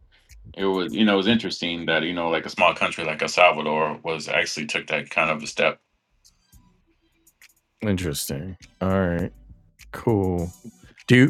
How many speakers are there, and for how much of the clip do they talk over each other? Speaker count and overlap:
2, no overlap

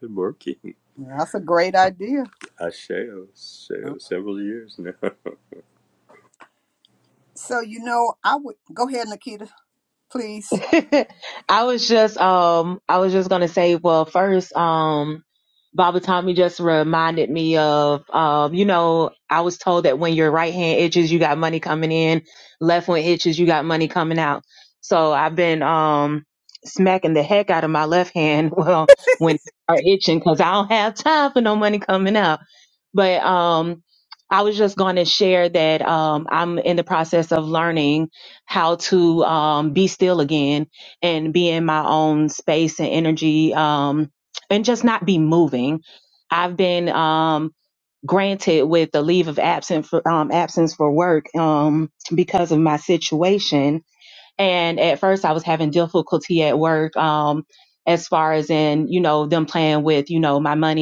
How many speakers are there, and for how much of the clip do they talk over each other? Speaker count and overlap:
3, under 1%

